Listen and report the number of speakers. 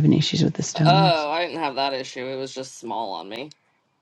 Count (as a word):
two